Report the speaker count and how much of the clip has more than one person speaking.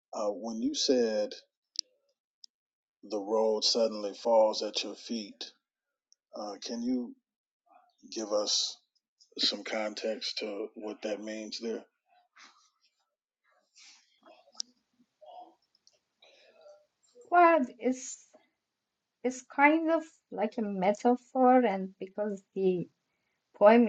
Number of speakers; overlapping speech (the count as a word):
two, no overlap